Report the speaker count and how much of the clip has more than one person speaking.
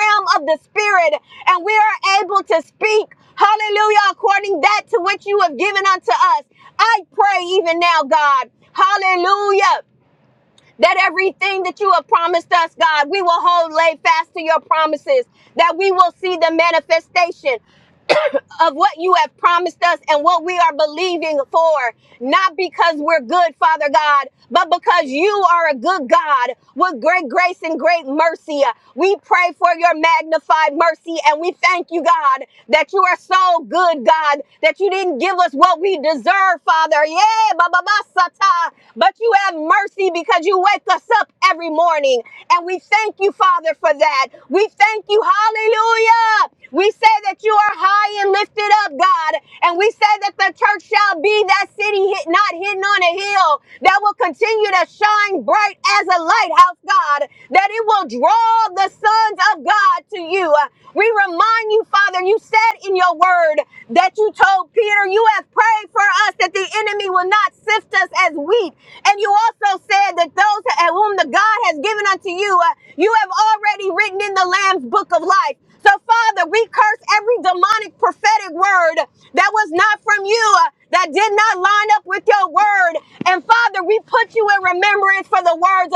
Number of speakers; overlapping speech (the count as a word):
one, no overlap